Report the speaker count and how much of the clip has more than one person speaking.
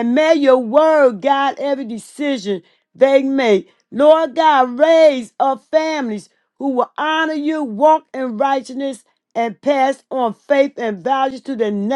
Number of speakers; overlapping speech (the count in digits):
1, no overlap